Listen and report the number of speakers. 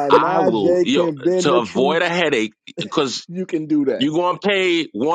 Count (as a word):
two